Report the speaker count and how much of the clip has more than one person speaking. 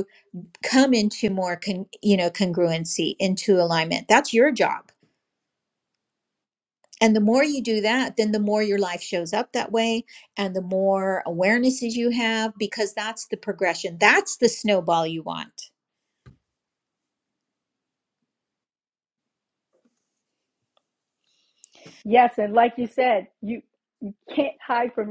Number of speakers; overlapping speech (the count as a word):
two, no overlap